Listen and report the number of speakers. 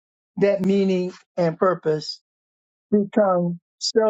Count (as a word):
one